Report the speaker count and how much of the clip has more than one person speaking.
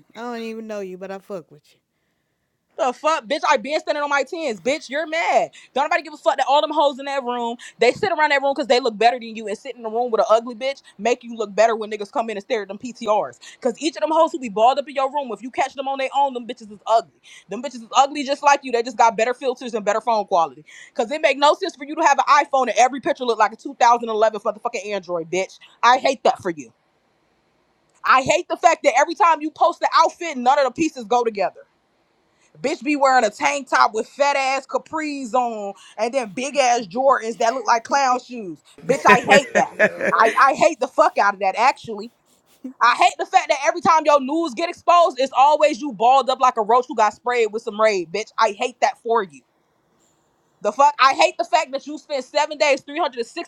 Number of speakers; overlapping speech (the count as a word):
two, no overlap